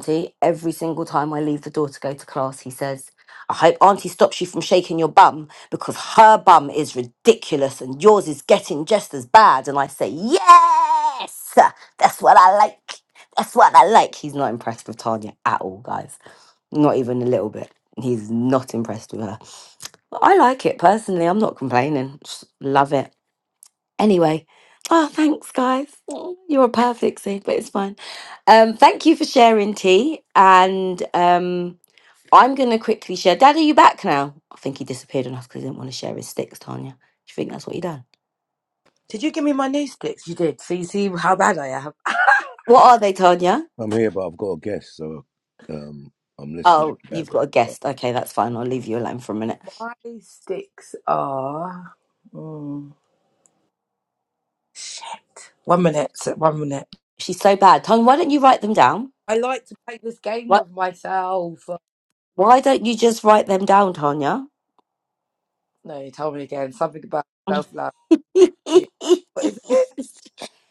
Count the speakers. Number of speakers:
3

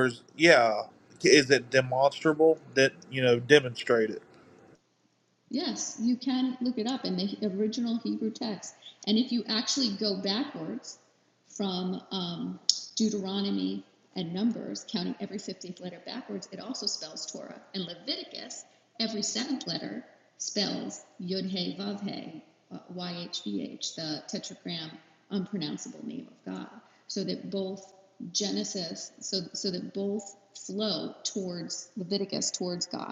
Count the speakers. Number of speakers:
2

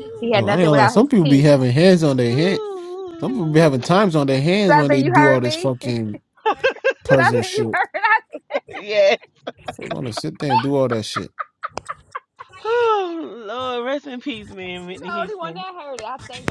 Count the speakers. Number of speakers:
3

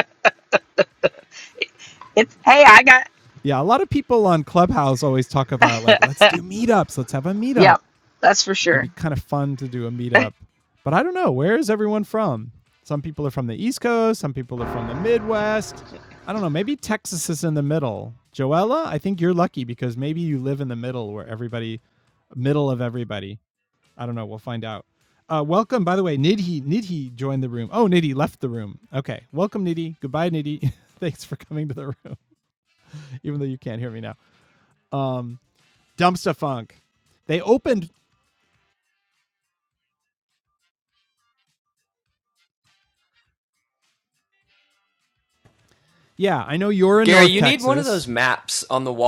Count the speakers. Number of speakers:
3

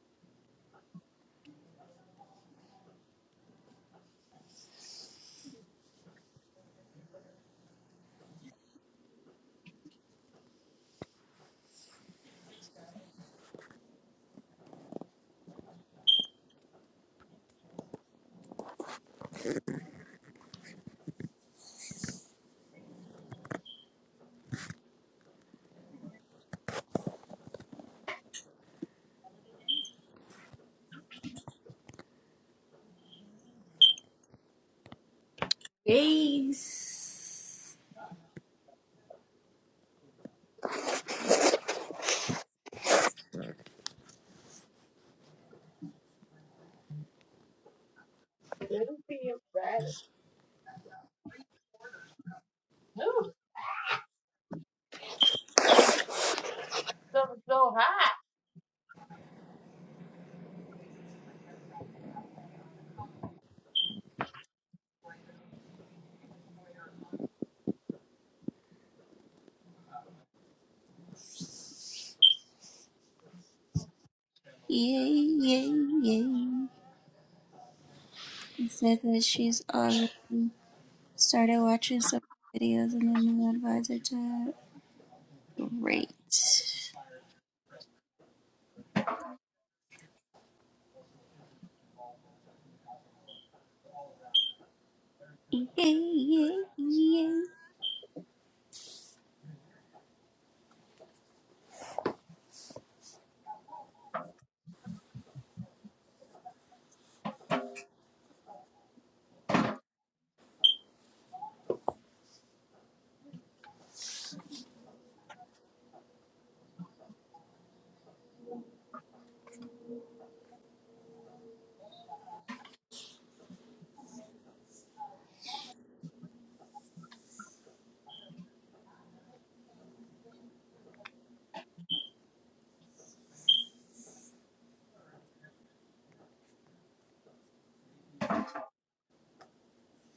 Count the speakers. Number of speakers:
2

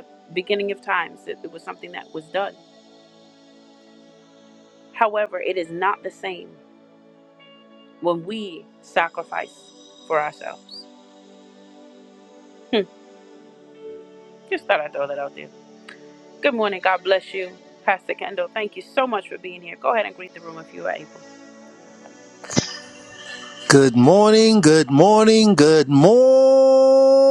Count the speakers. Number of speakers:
2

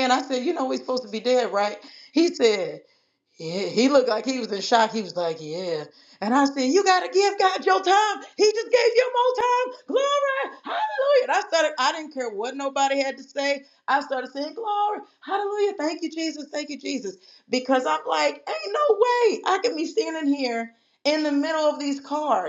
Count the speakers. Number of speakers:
1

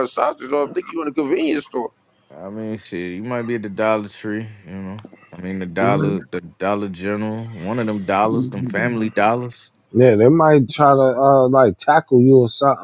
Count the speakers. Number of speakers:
3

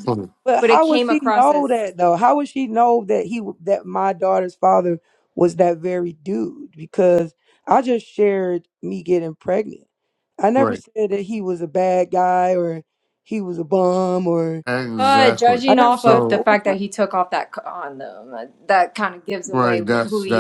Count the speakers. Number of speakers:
3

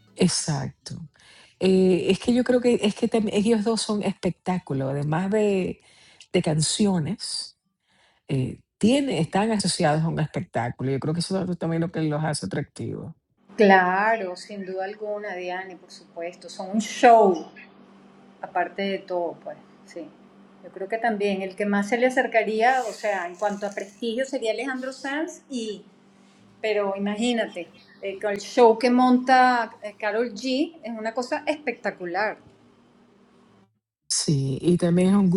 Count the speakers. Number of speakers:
2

